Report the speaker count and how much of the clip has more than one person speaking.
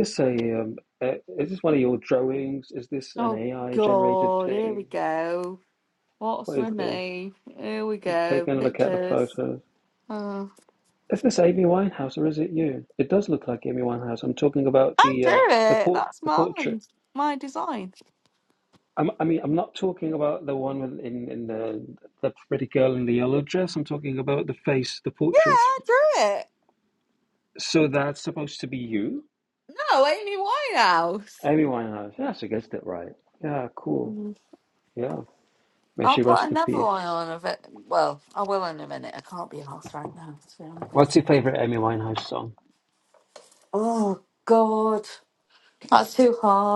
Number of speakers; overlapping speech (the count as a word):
two, about 13%